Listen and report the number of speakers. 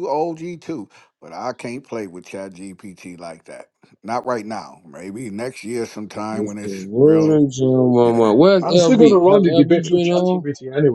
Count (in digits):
3